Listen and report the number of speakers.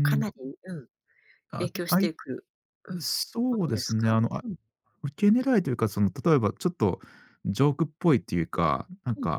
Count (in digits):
2